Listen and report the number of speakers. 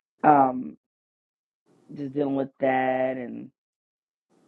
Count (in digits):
1